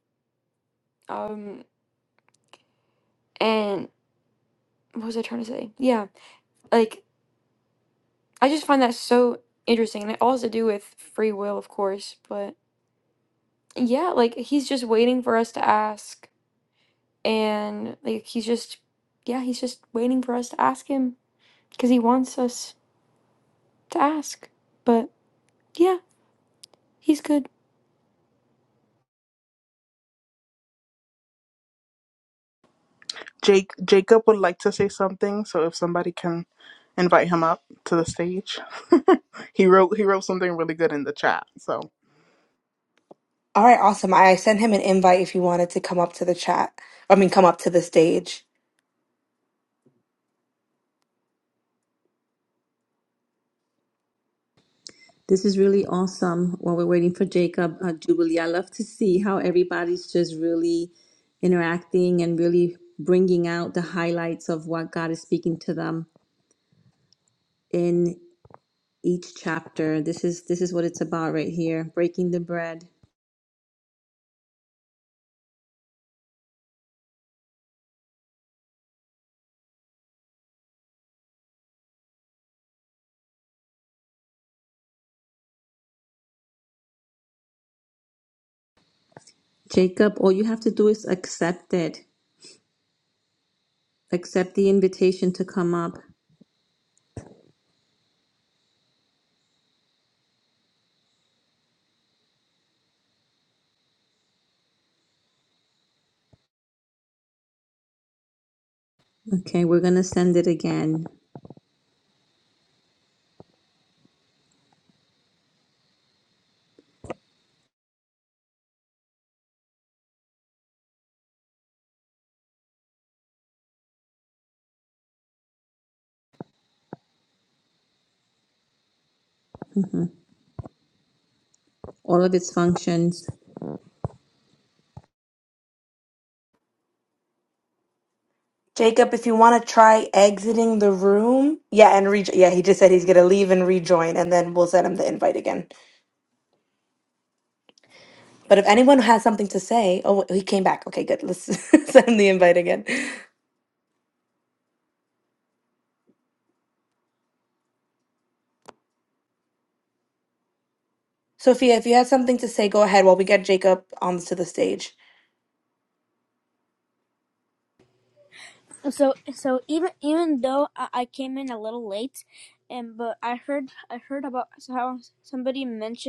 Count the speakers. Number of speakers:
five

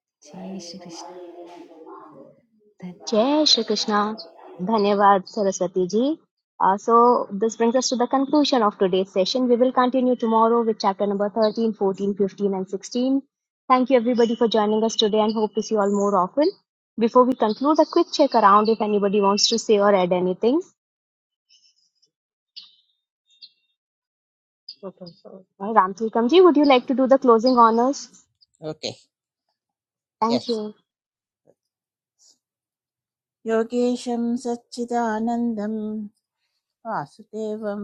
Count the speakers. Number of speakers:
three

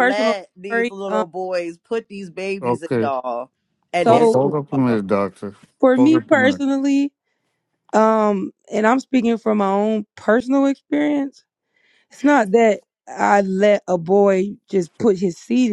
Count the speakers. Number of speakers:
three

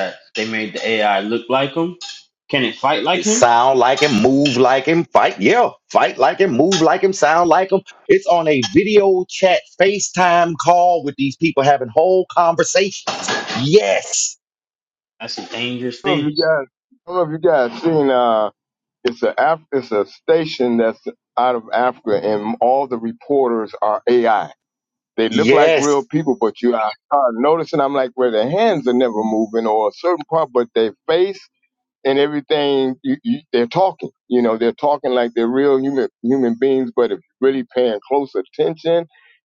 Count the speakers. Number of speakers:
three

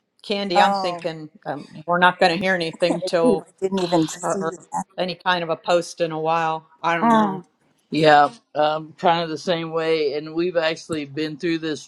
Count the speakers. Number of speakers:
three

